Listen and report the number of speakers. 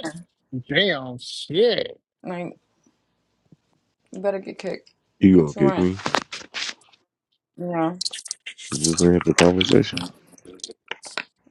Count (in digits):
3